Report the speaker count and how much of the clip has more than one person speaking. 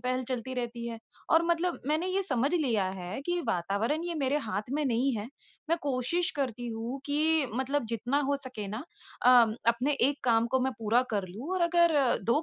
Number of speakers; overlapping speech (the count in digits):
1, no overlap